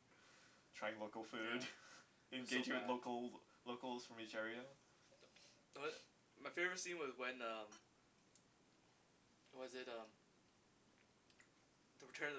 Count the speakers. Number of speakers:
two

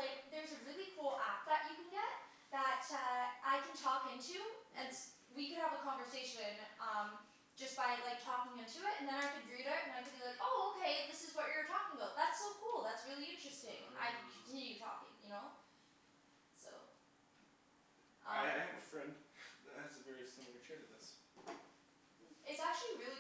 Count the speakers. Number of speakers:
two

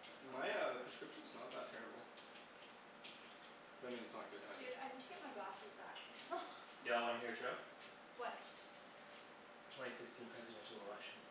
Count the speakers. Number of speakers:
three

